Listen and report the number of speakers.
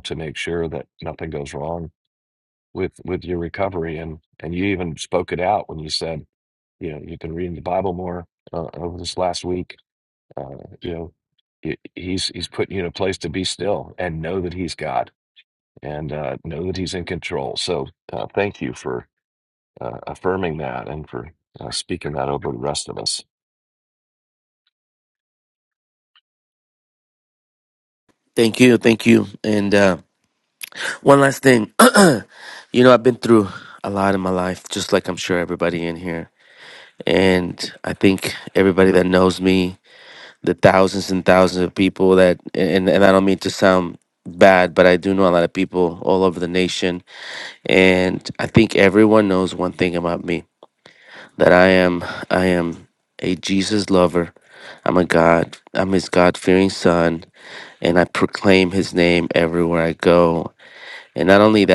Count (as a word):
two